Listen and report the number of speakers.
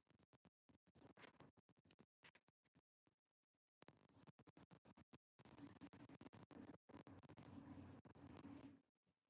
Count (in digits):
0